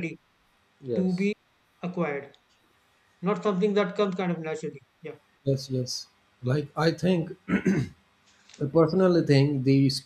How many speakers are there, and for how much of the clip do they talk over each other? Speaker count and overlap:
2, about 1%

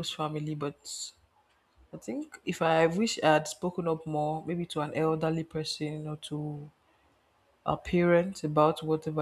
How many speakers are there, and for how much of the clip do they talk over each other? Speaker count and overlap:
1, no overlap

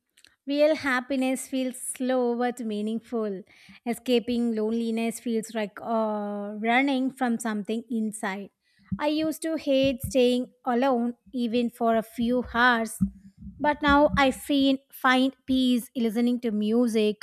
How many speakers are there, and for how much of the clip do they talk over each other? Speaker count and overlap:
1, no overlap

